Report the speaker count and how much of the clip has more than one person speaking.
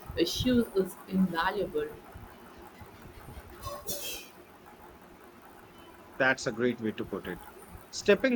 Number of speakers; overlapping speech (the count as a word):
two, no overlap